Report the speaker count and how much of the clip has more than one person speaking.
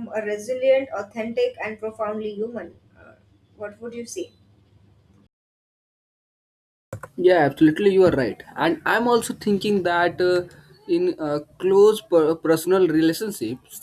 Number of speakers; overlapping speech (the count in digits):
2, no overlap